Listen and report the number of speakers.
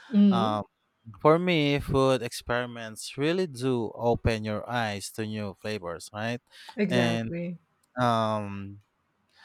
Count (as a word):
two